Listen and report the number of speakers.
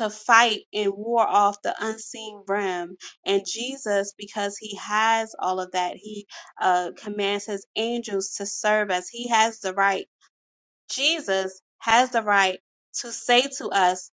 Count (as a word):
one